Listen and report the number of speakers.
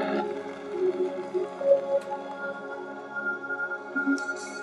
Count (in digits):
0